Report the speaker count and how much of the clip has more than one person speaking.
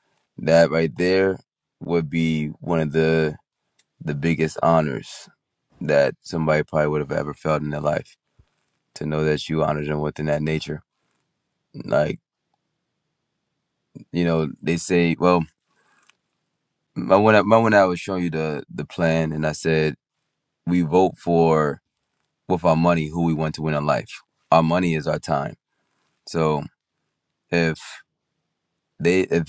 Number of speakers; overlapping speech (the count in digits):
1, no overlap